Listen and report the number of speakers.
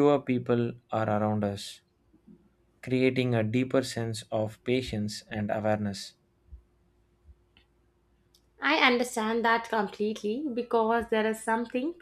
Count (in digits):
2